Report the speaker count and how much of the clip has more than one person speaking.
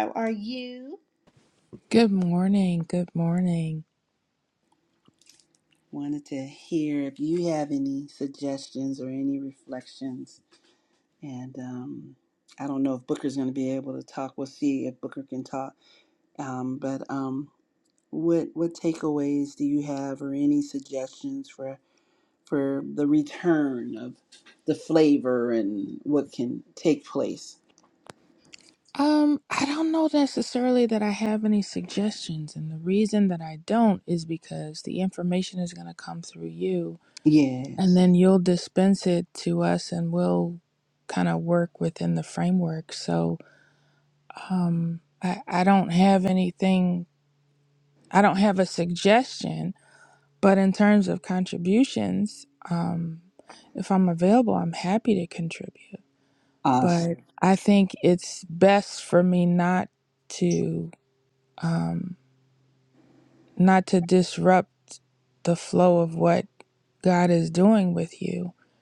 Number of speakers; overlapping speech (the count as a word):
two, under 1%